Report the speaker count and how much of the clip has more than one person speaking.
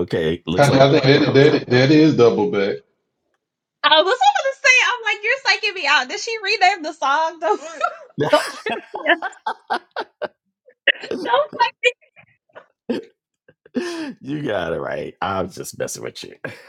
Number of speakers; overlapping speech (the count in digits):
3, about 7%